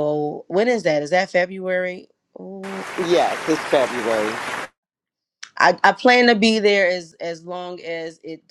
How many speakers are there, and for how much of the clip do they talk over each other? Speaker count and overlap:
2, no overlap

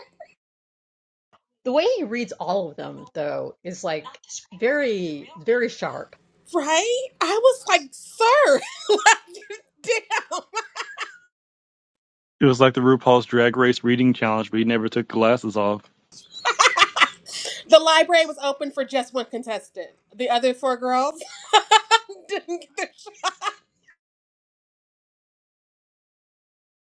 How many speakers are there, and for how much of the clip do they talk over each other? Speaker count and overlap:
3, no overlap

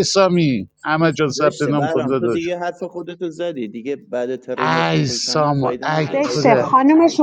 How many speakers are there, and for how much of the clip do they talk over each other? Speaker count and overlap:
3, about 41%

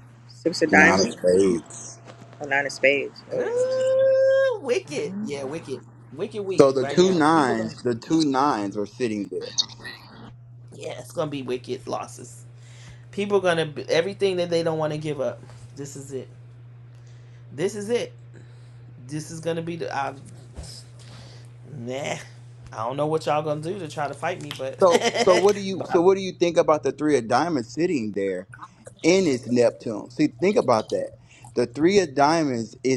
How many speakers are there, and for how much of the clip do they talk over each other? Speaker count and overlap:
3, about 7%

